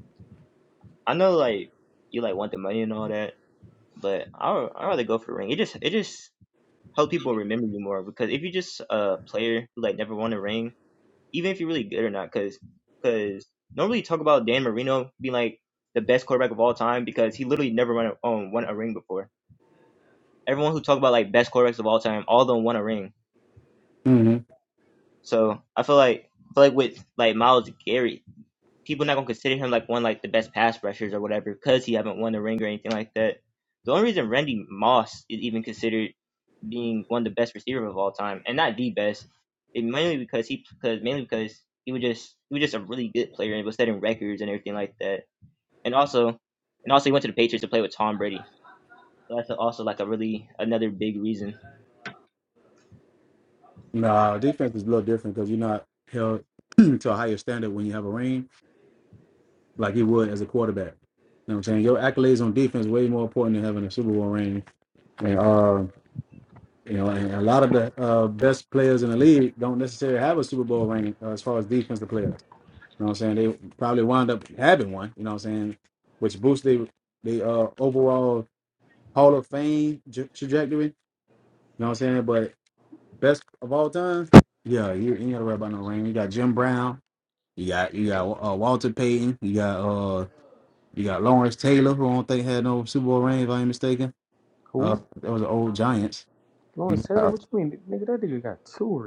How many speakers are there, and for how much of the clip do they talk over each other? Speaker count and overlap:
3, about 1%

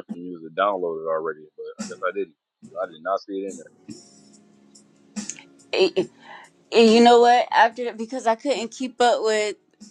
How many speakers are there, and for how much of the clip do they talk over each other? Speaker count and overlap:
2, no overlap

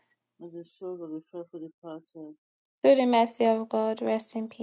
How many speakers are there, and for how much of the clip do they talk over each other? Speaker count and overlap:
2, no overlap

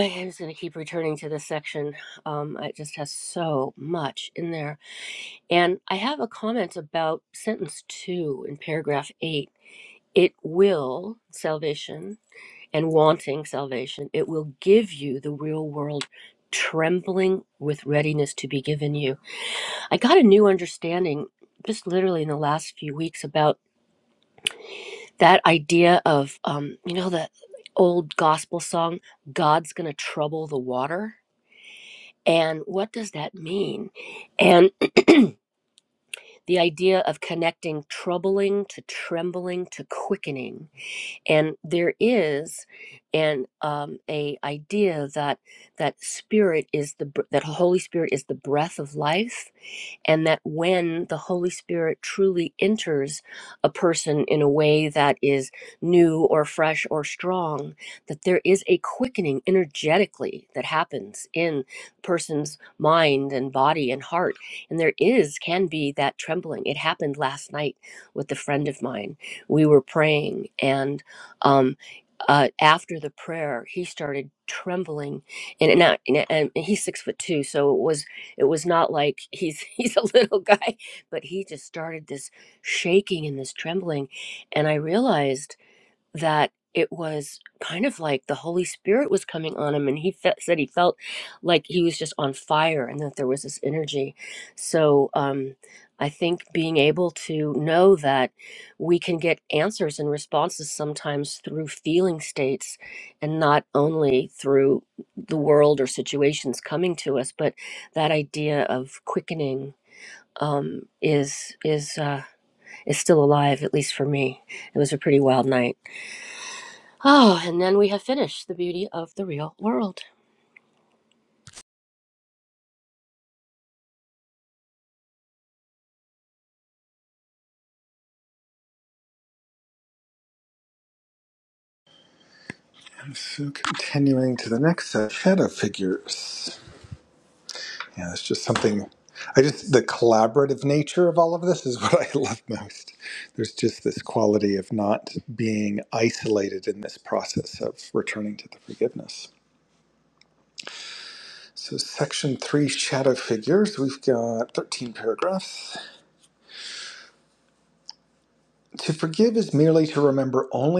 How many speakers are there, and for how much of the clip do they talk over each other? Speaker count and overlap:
2, no overlap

